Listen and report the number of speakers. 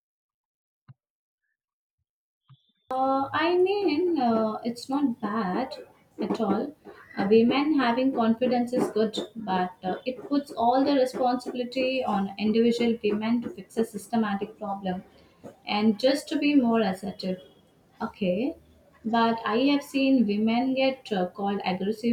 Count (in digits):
1